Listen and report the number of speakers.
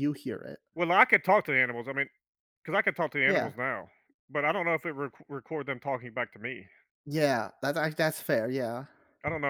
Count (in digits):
2